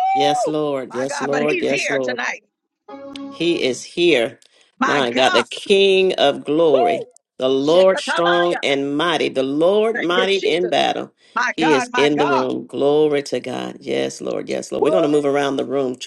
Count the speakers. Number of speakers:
two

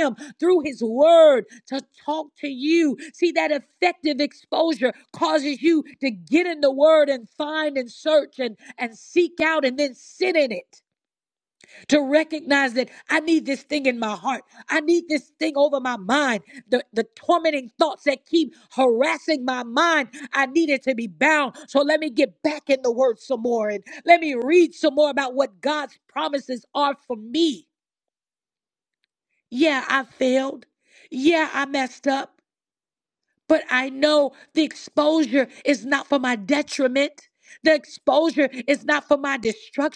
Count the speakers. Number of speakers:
one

